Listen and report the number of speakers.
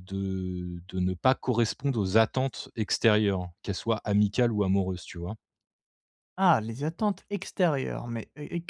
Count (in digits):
2